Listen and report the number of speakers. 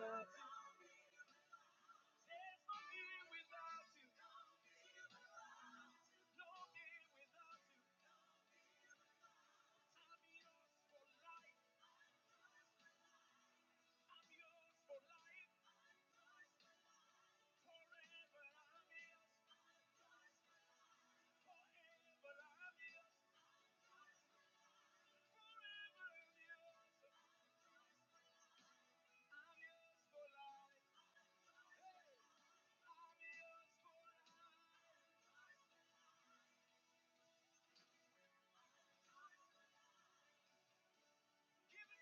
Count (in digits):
0